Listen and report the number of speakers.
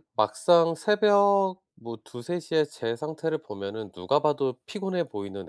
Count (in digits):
1